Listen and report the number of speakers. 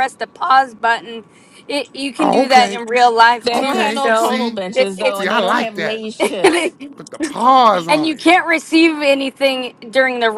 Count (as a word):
three